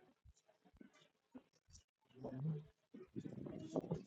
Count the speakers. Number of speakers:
zero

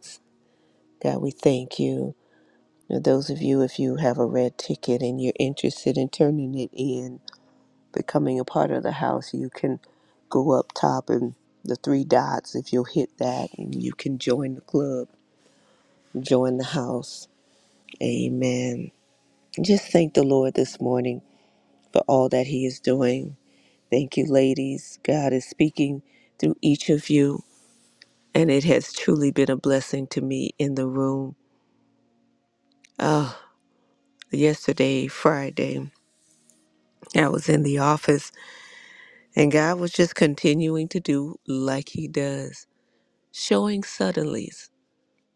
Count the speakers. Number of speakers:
one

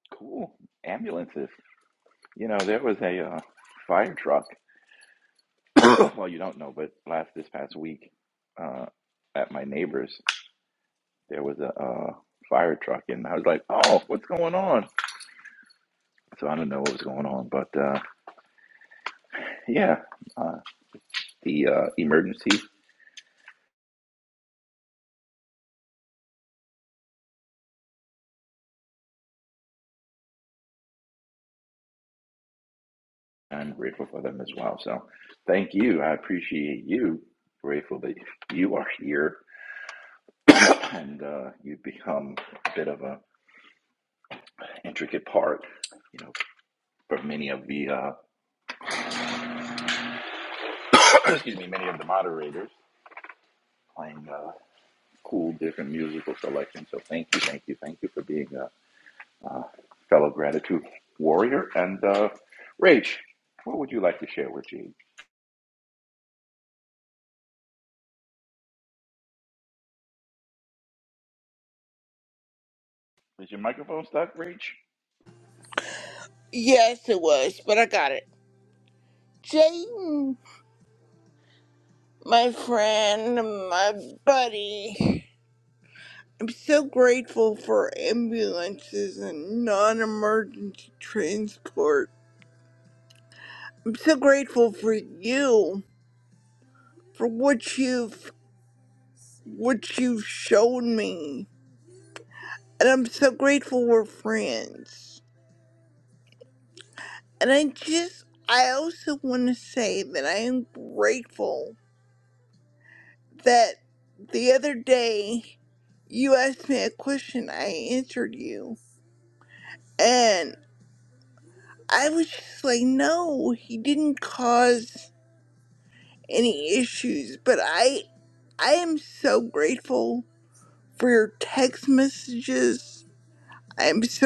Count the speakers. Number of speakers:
two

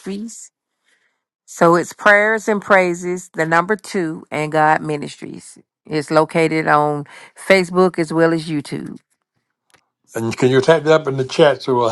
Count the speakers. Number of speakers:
two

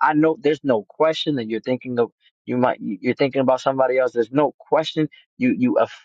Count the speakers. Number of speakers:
one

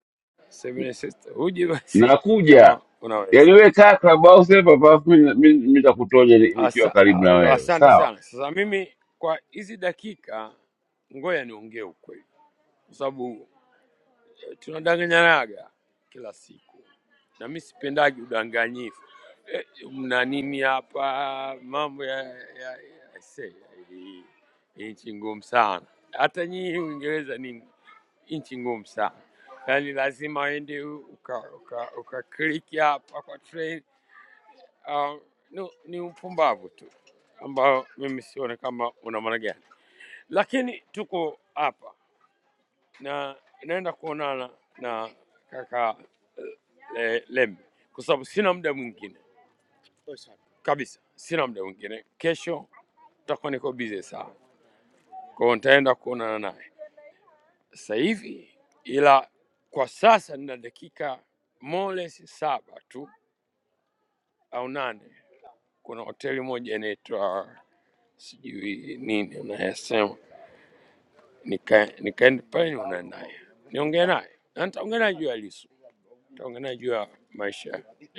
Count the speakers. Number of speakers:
two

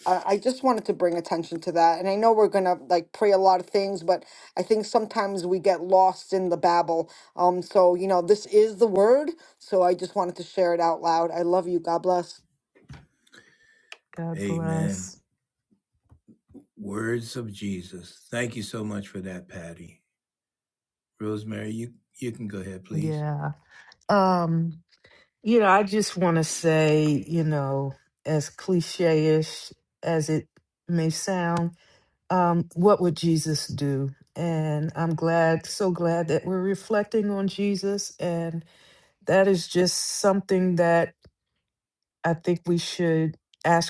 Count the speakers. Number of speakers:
three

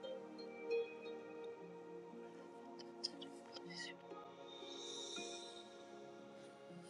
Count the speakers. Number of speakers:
zero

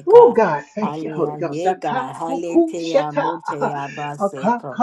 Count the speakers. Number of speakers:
two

